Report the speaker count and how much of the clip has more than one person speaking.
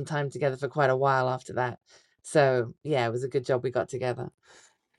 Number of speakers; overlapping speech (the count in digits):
1, no overlap